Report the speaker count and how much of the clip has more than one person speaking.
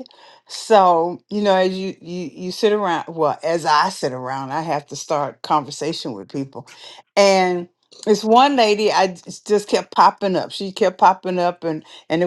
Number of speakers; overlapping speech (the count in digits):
1, no overlap